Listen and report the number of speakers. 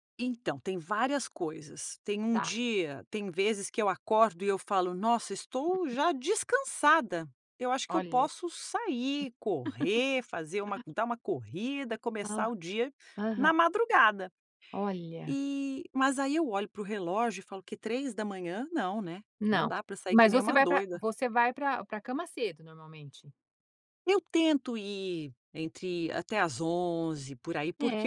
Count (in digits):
2